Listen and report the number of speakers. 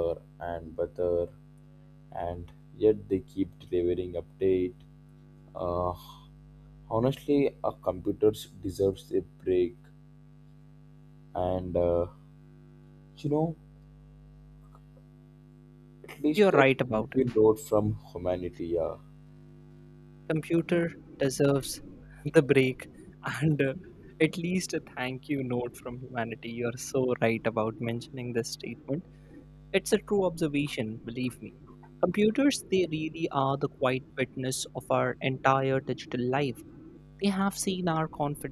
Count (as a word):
two